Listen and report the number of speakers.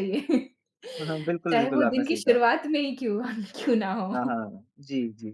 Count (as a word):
two